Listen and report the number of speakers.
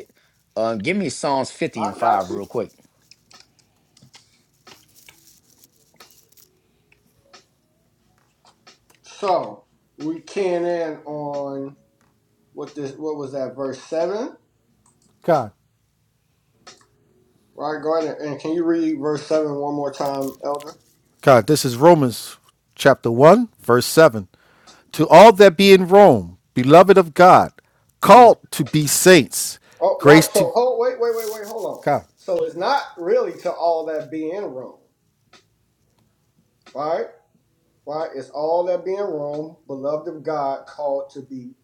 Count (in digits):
3